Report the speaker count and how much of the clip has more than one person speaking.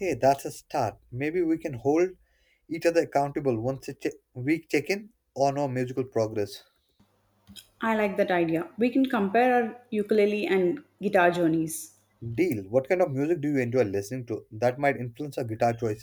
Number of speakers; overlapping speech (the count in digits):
2, no overlap